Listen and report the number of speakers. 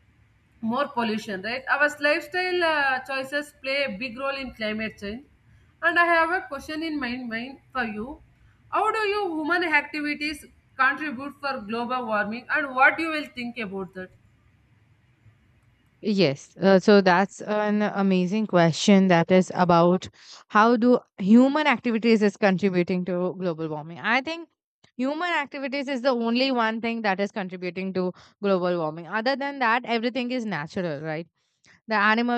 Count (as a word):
two